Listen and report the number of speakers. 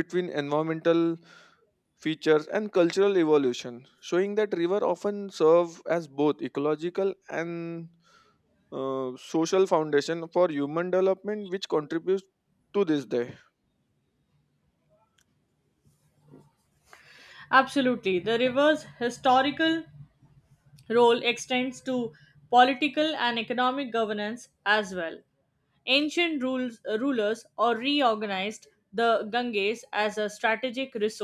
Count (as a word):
two